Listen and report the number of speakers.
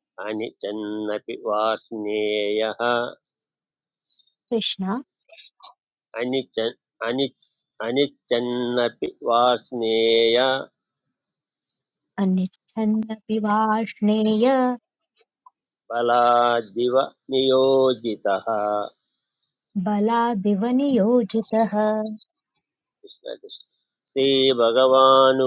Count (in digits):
2